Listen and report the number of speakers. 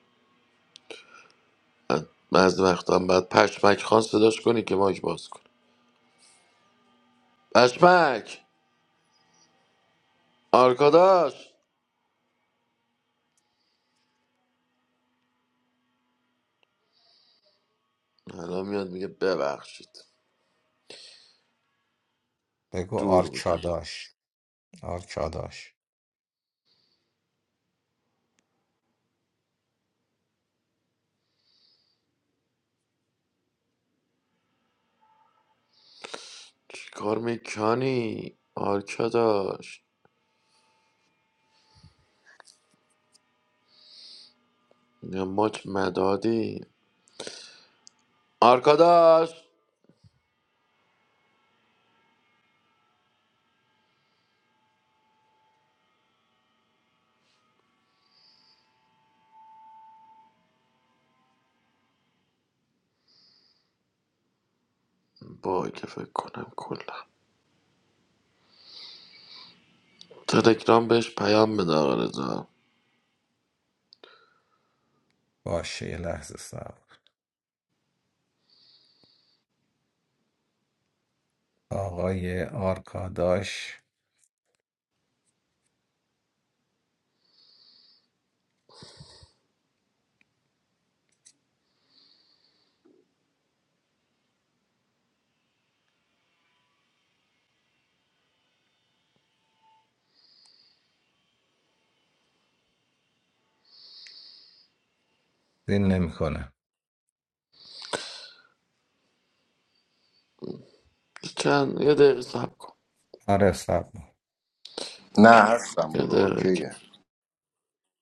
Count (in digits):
3